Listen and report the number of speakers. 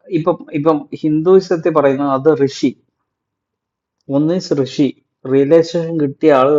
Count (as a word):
one